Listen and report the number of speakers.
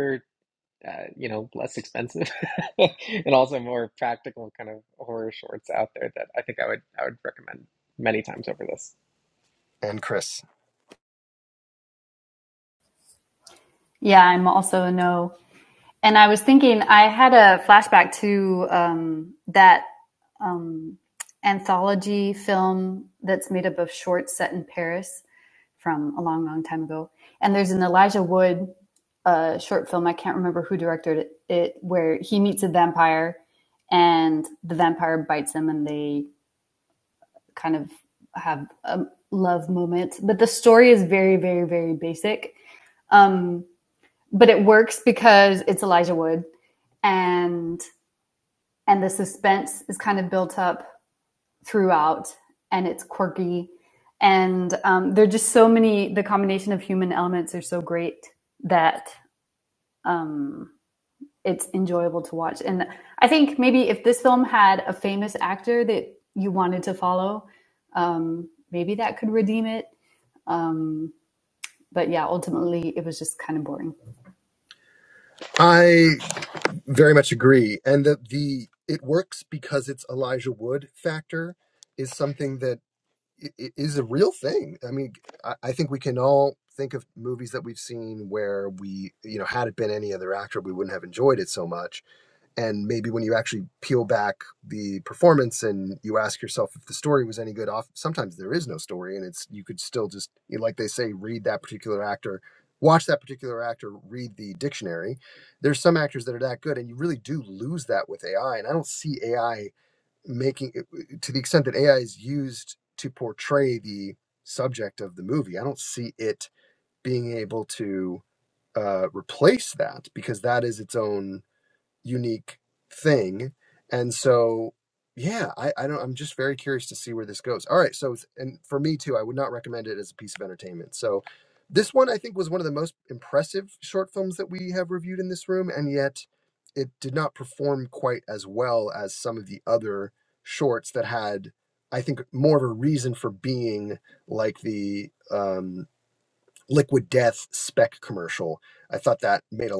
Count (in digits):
3